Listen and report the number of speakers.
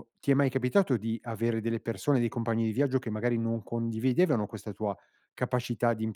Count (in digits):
1